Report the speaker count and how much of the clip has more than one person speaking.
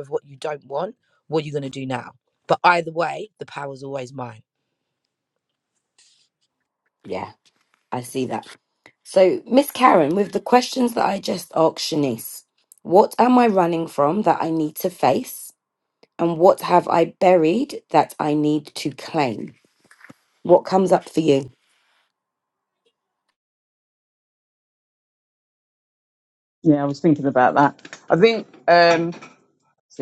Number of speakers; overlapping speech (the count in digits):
3, no overlap